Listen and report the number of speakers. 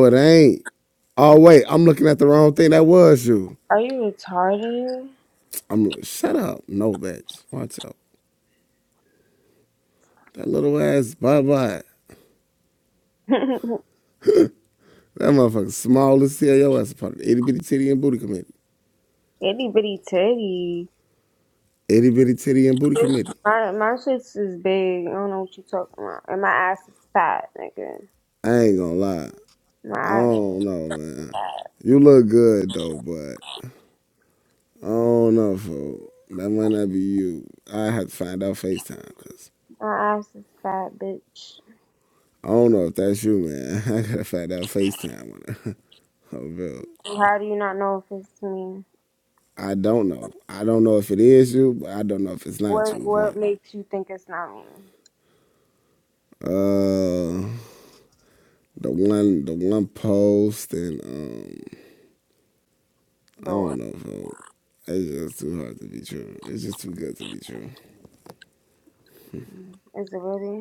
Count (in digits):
2